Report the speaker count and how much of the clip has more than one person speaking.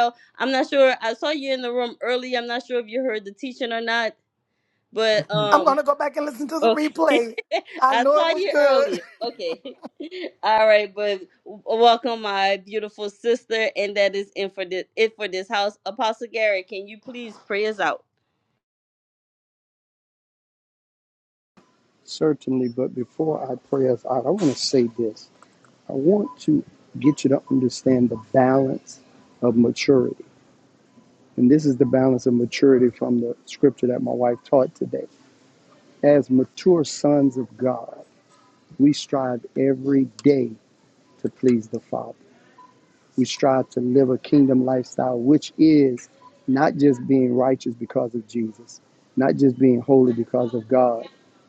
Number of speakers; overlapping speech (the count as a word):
three, about 4%